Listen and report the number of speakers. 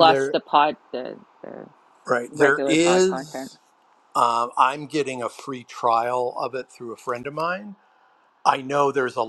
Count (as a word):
two